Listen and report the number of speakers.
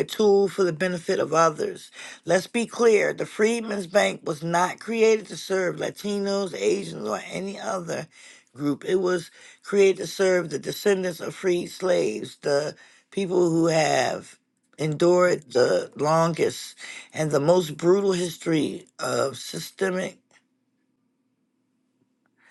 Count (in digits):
1